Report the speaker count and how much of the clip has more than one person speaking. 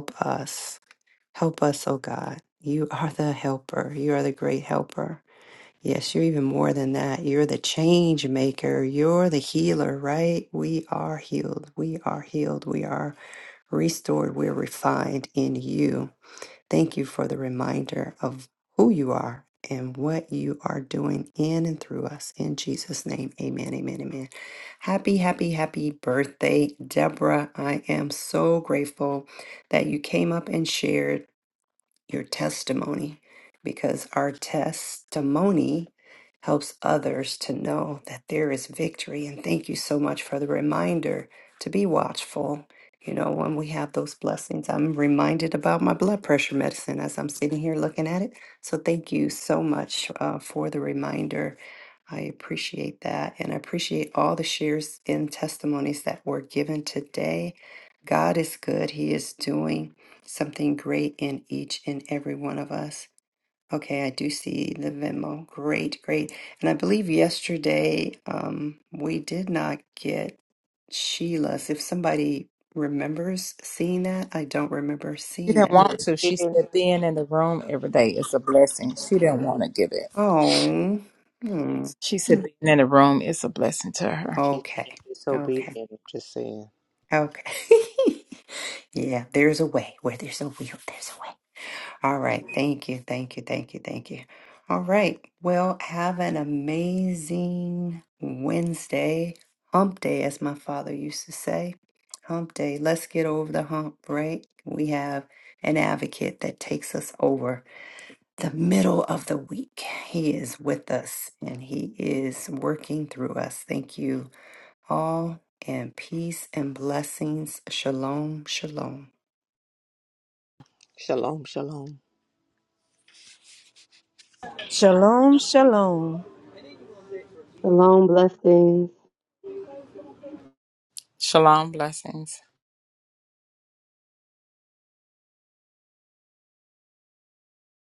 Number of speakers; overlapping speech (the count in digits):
5, about 1%